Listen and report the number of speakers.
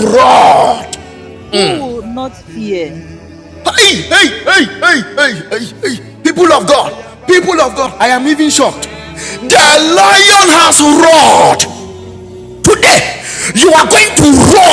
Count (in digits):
2